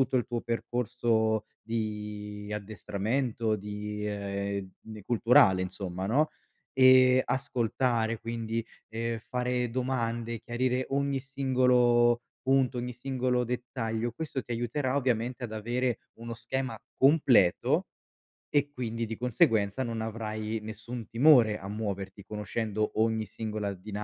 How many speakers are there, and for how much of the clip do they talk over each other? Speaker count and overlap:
one, no overlap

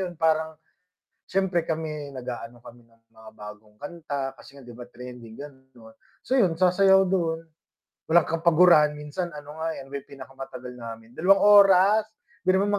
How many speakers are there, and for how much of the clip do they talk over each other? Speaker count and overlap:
one, no overlap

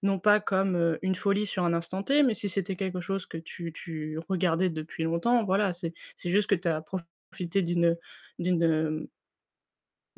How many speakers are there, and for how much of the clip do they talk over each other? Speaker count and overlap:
one, no overlap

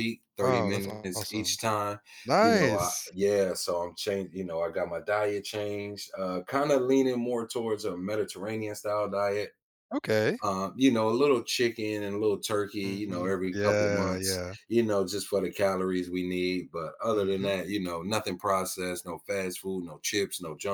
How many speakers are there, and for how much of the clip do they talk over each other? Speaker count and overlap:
two, about 18%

